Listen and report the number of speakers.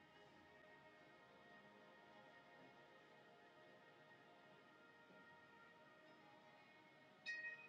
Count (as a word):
zero